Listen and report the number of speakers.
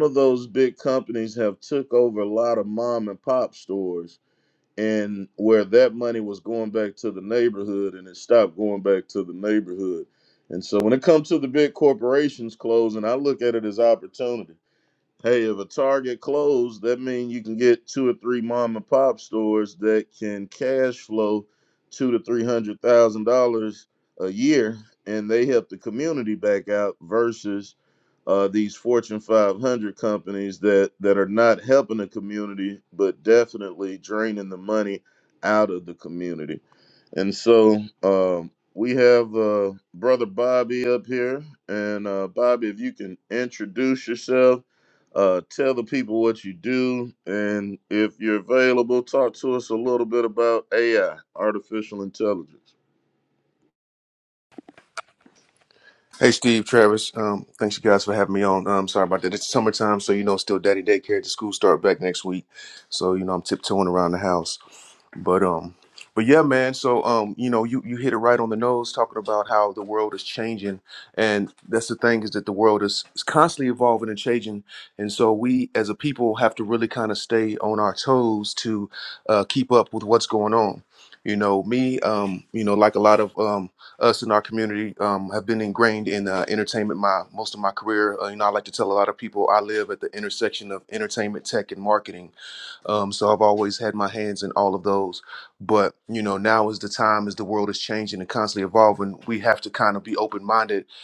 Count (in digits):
2